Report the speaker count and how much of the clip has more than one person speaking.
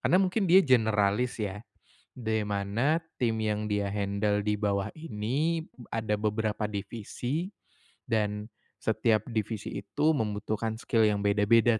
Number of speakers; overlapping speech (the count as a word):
one, no overlap